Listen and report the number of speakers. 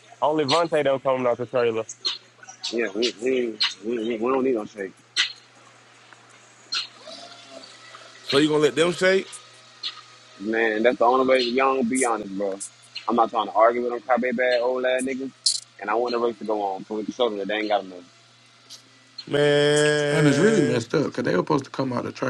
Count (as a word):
four